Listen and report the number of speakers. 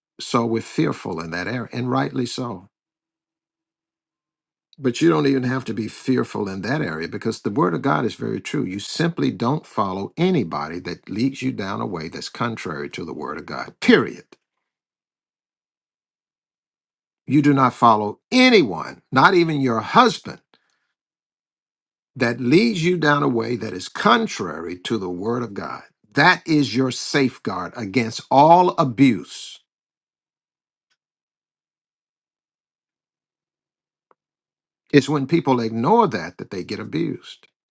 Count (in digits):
1